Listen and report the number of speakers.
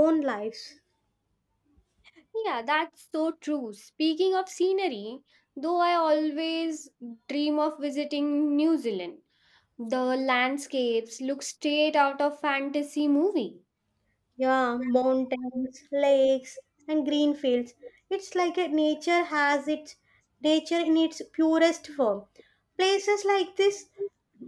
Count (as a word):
two